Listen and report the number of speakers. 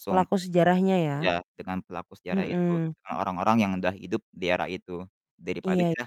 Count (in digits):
2